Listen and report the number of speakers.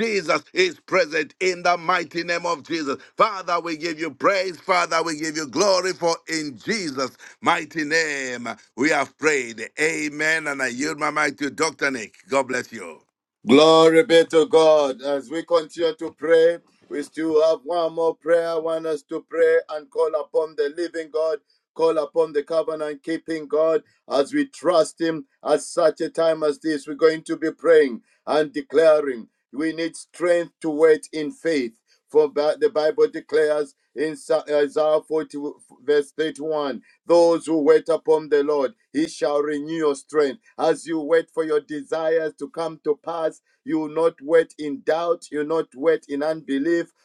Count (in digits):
2